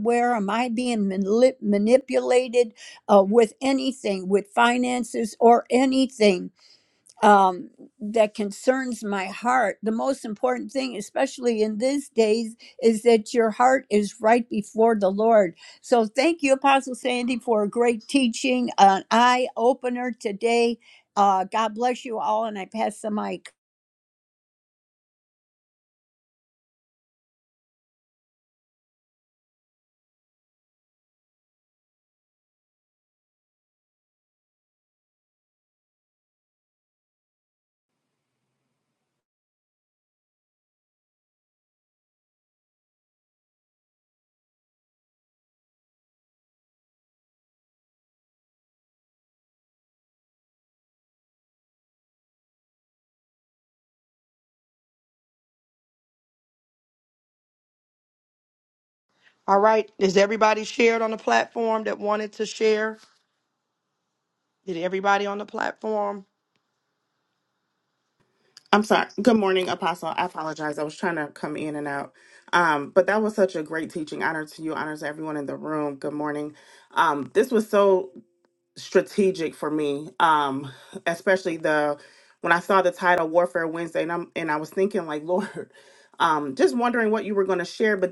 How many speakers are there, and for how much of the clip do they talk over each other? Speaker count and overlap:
3, no overlap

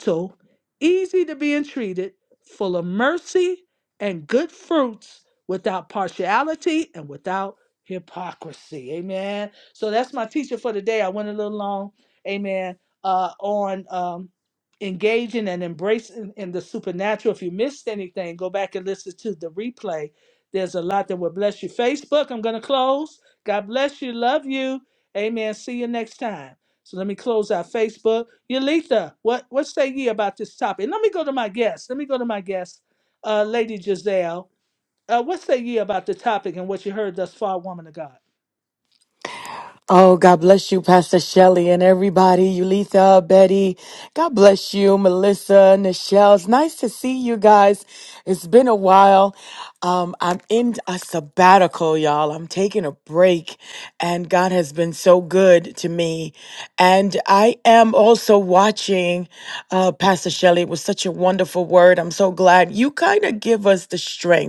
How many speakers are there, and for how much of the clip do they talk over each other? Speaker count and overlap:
2, no overlap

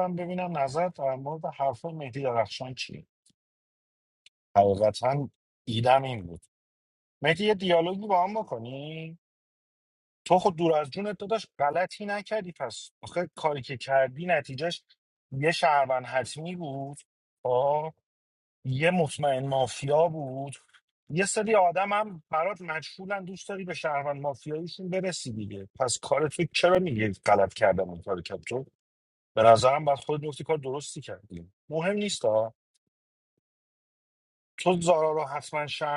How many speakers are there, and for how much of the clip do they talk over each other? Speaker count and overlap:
1, no overlap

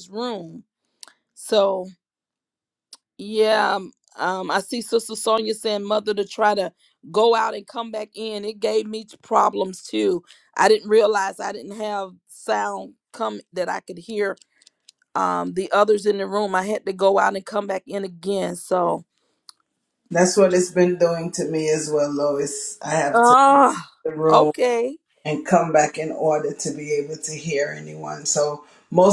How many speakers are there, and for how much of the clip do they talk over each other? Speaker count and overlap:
2, about 2%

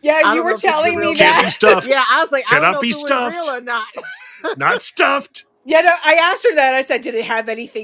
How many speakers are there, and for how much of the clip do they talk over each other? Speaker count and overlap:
3, about 36%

